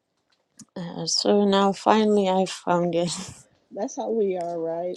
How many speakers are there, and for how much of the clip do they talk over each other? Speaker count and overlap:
two, no overlap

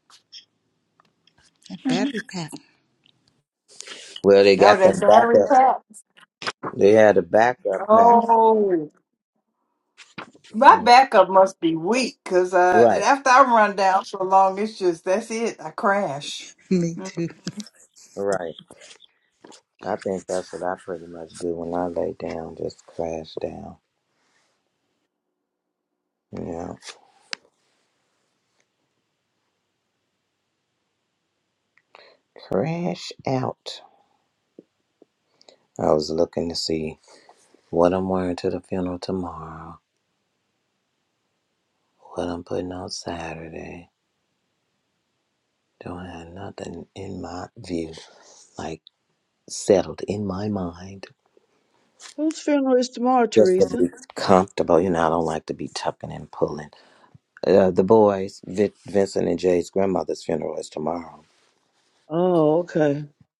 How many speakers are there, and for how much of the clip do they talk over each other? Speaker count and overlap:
four, about 4%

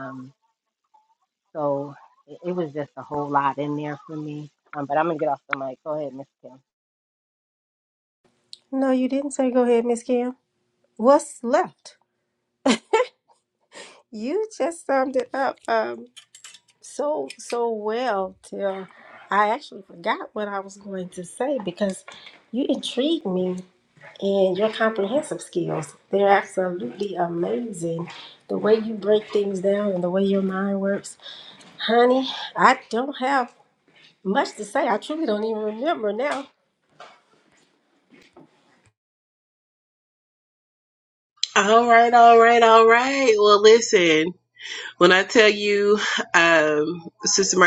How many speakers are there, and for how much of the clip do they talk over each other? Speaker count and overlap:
three, no overlap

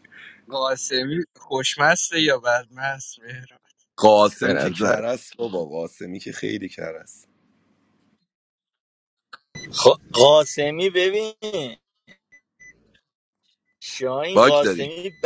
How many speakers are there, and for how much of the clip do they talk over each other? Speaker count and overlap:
three, about 7%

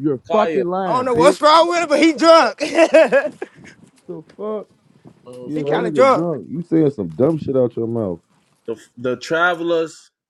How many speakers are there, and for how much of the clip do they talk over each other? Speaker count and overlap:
three, about 16%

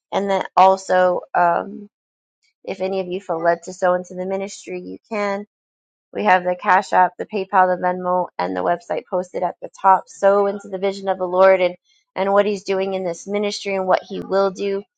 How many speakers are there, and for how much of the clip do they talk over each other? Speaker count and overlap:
one, no overlap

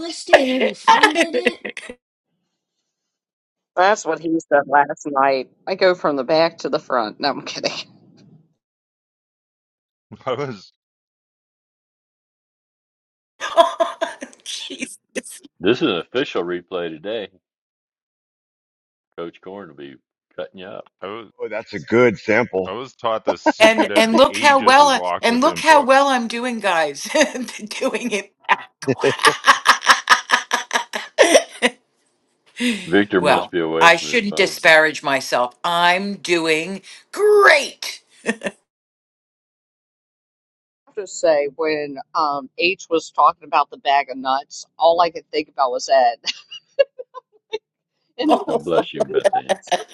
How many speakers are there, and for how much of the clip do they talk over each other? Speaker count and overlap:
six, about 9%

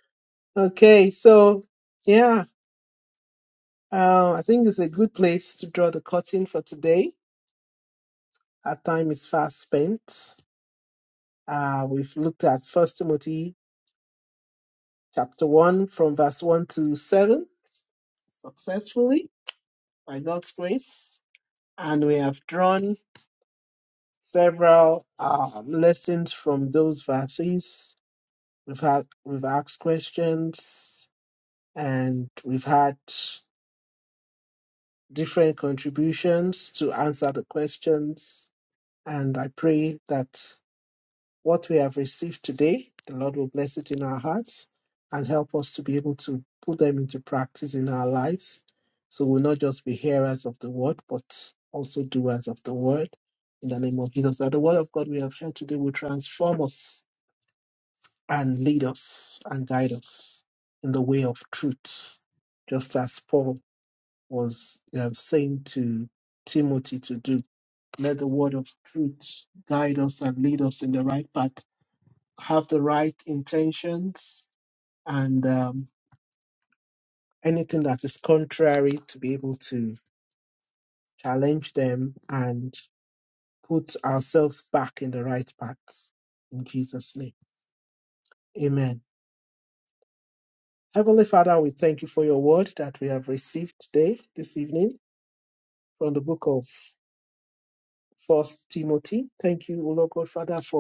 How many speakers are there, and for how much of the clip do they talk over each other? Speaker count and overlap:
one, no overlap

